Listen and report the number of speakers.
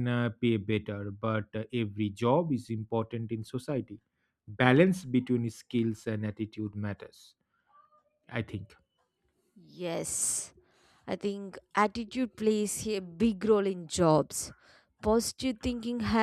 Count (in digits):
2